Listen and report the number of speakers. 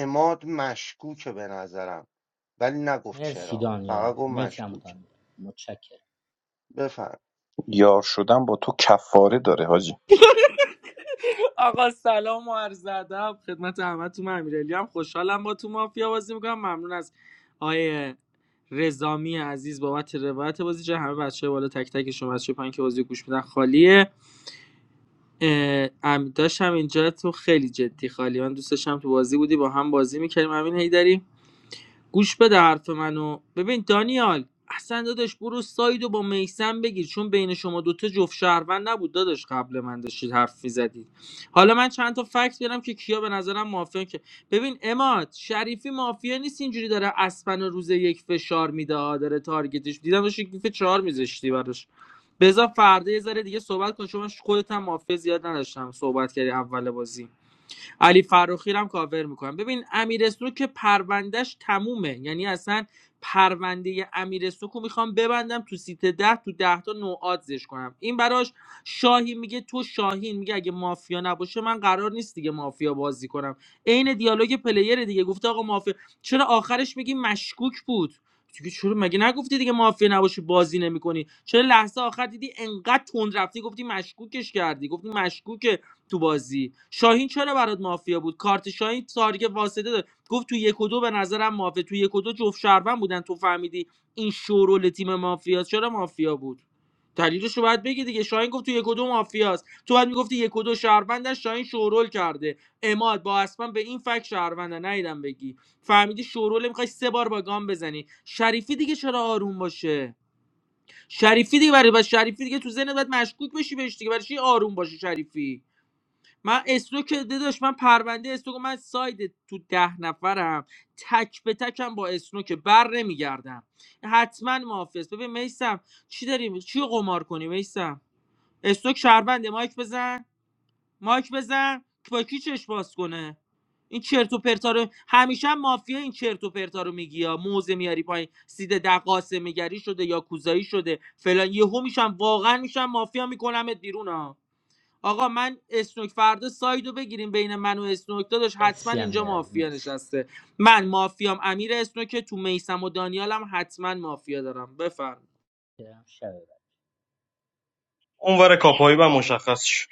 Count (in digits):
5